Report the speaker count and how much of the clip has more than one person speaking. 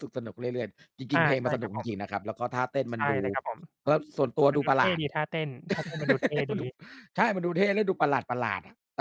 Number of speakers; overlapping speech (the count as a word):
two, about 16%